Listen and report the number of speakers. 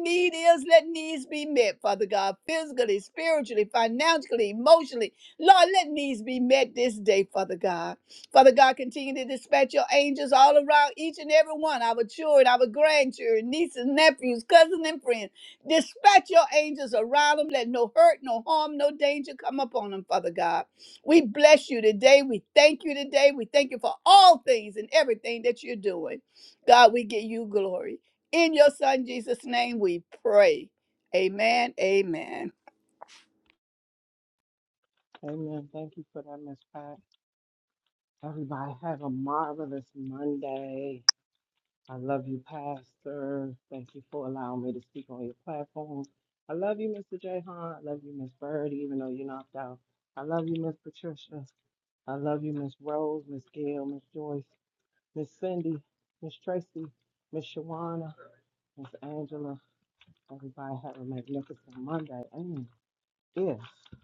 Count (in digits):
2